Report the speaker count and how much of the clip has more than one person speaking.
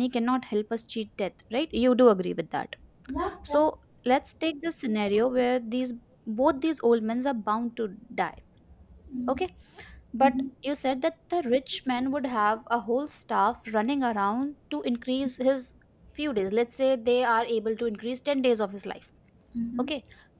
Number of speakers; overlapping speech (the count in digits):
2, about 2%